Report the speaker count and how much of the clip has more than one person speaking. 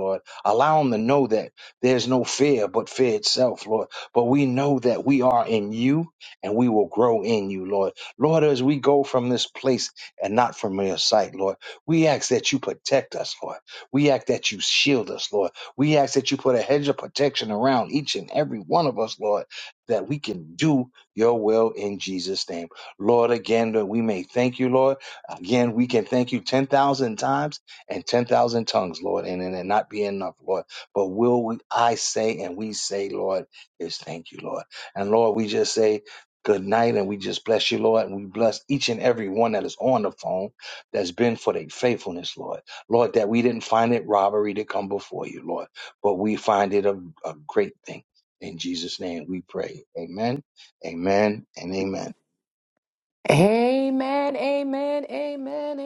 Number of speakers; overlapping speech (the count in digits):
2, no overlap